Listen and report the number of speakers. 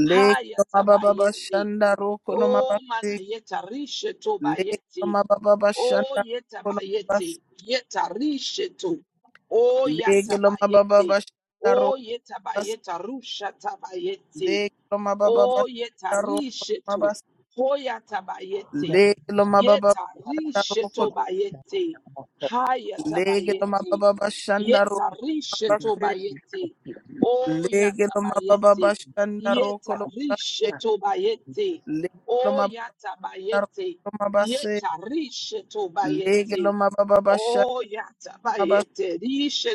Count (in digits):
2